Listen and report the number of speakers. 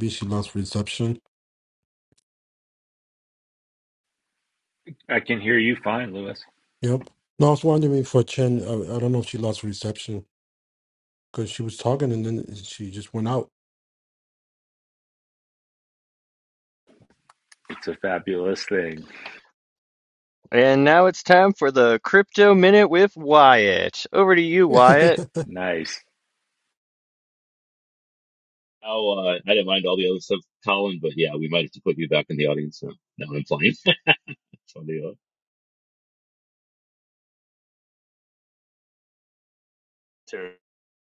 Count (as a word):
four